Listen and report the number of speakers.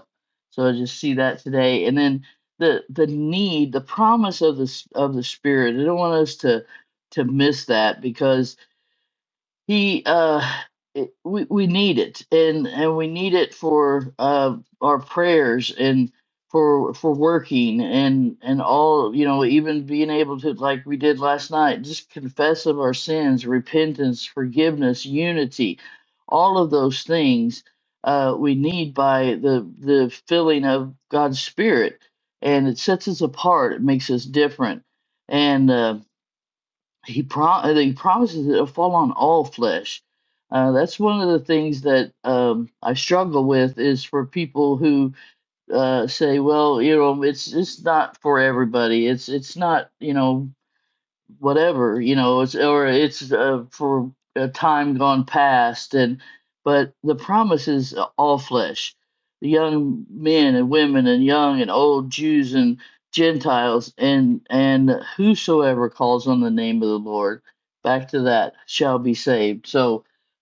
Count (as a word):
one